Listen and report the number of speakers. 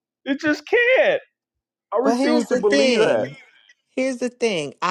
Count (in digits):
2